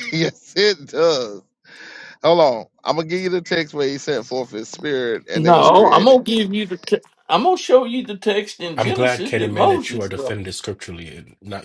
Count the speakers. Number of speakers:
three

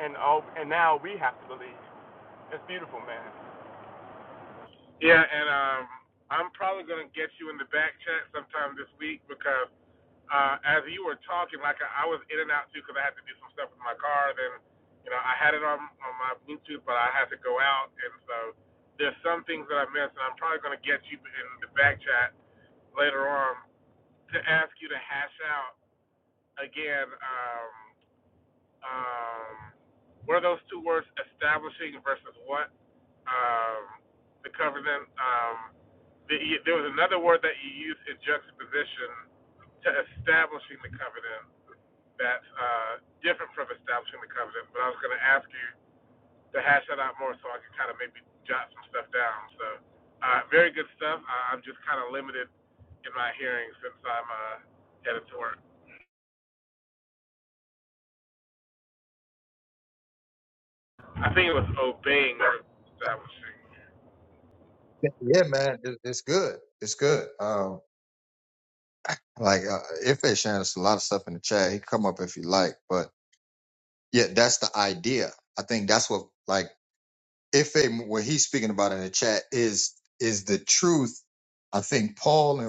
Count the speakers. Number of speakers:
three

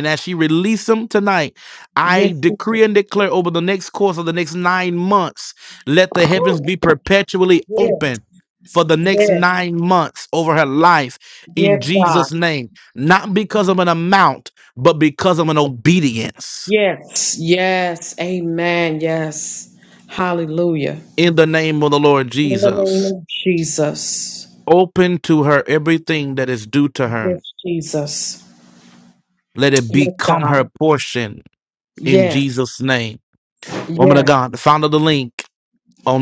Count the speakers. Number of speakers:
two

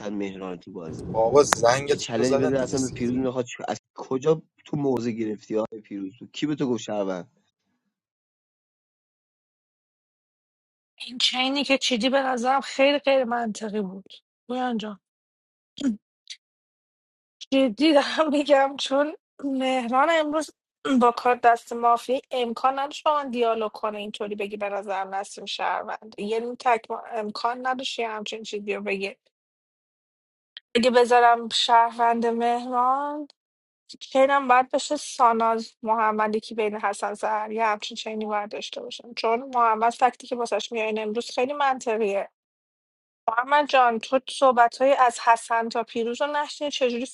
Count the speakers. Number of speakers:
three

